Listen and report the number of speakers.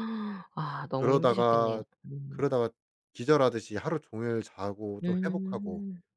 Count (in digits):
2